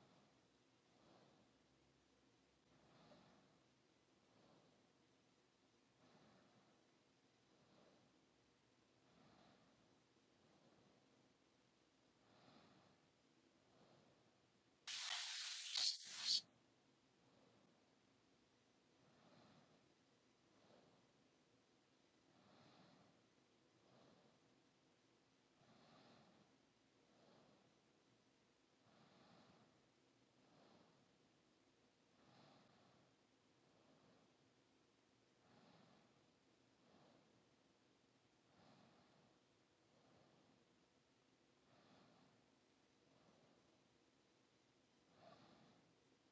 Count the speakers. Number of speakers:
0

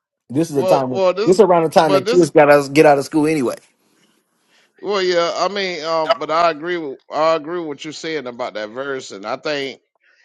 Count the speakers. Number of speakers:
2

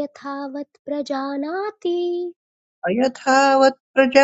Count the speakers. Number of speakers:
2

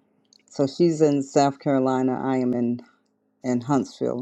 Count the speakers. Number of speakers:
1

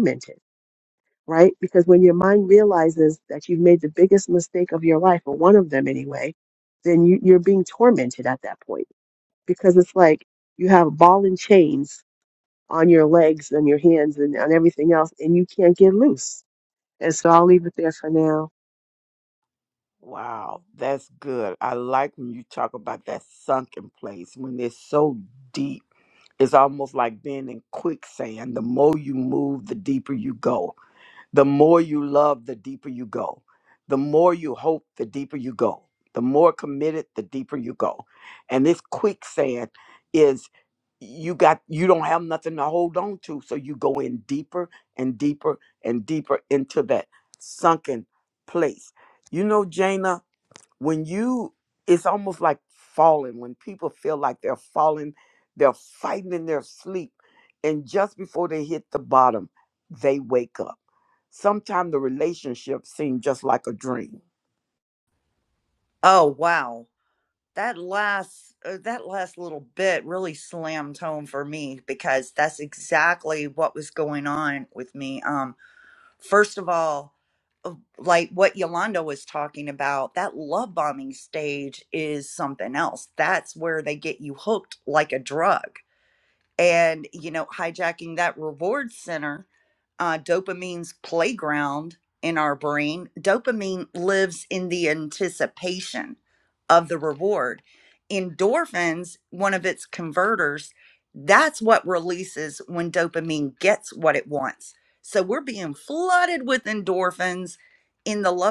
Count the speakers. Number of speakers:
3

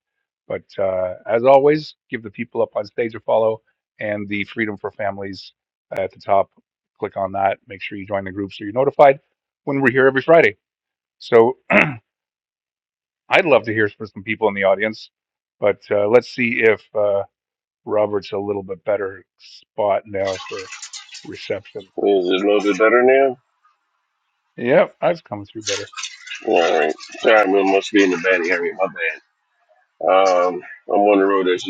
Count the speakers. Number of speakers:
2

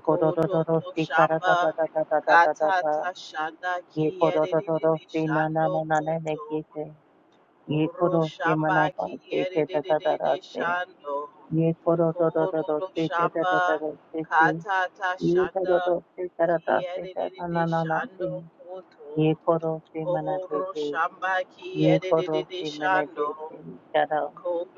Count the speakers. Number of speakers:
2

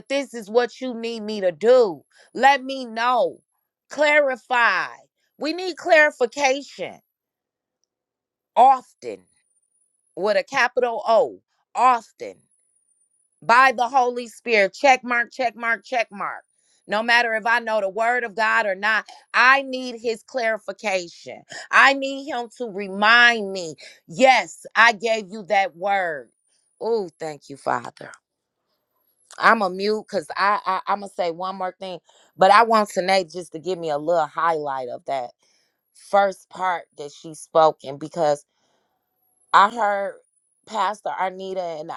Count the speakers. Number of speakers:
1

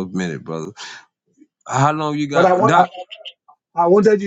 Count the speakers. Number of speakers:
2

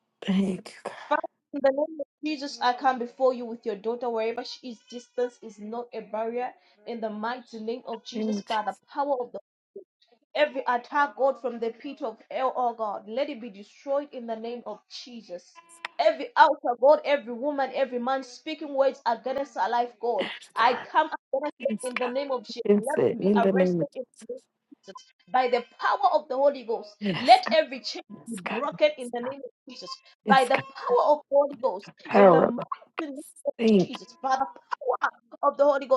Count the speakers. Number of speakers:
2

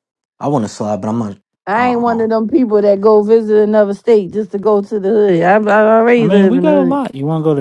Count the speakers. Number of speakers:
3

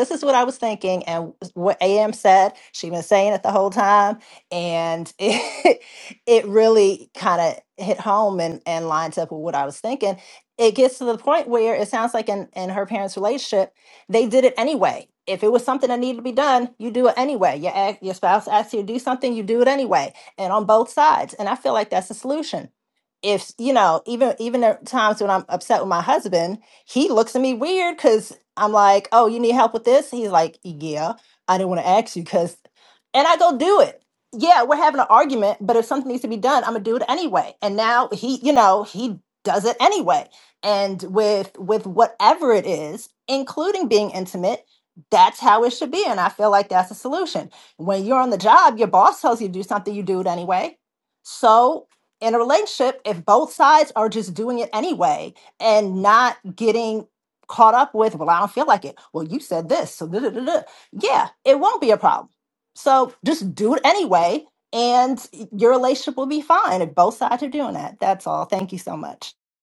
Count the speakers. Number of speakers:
1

